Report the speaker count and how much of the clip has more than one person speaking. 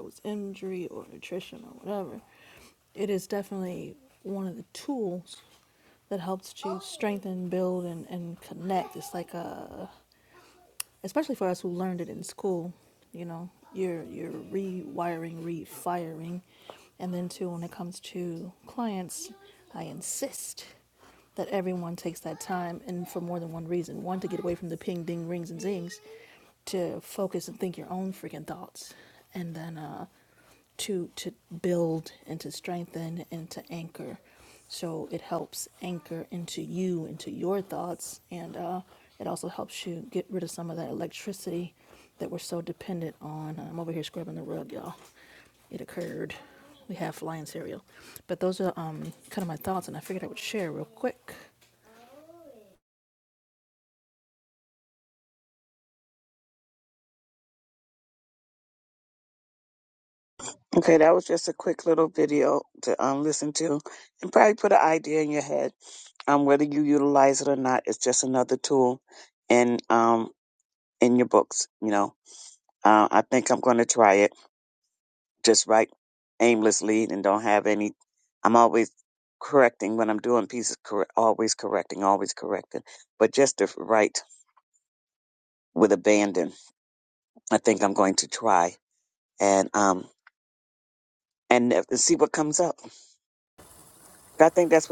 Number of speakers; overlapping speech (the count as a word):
two, no overlap